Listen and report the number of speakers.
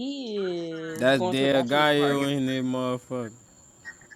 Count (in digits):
2